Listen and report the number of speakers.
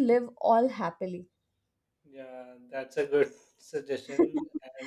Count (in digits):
2